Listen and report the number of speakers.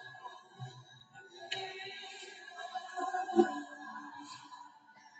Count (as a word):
zero